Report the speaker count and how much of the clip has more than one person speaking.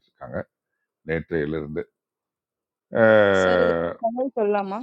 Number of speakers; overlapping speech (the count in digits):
2, about 10%